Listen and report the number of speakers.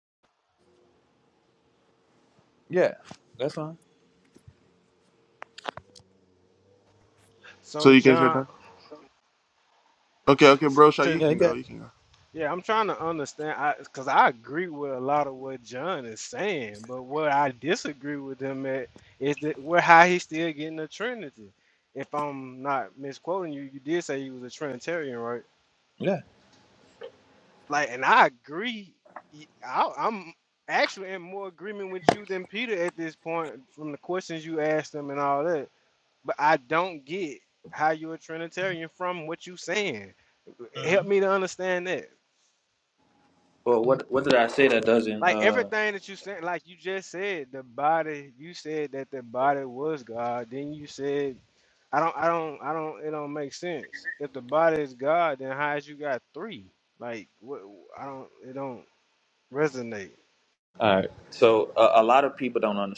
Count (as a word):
three